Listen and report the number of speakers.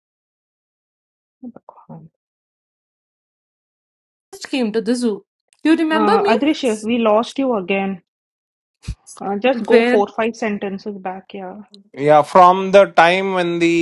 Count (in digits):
3